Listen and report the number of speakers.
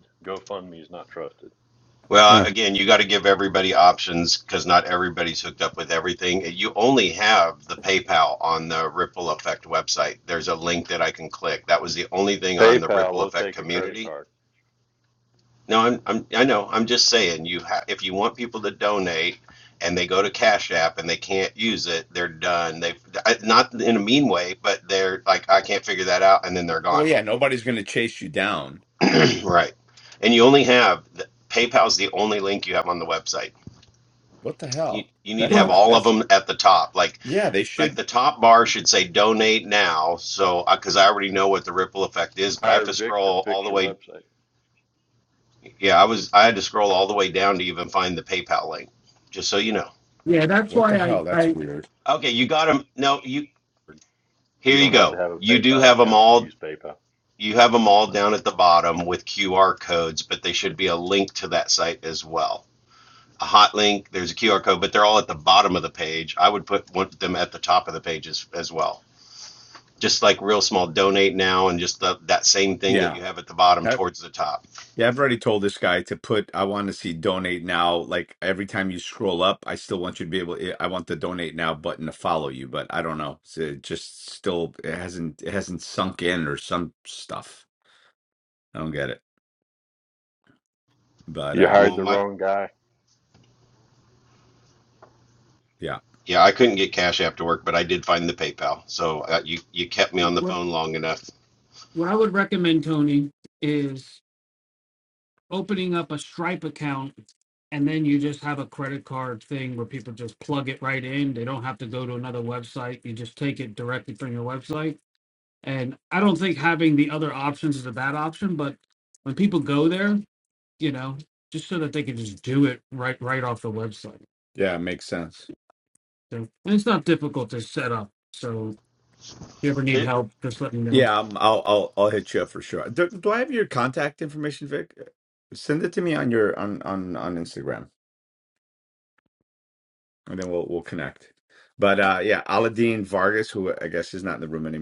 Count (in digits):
4